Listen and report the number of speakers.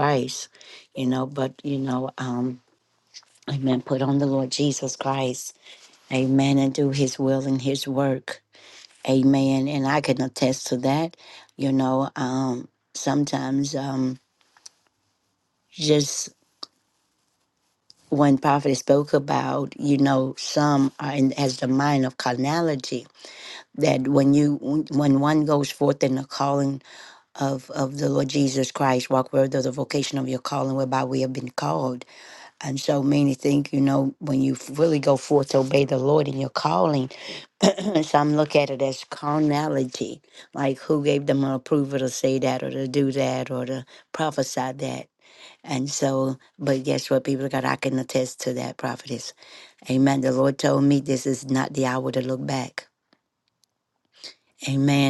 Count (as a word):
one